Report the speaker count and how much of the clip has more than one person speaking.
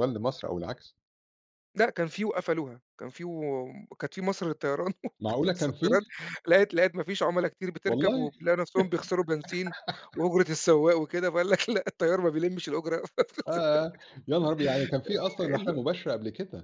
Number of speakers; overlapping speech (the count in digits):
2, about 7%